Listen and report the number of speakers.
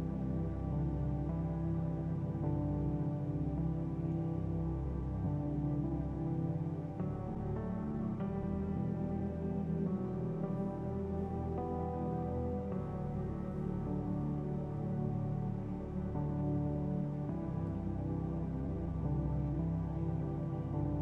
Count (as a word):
zero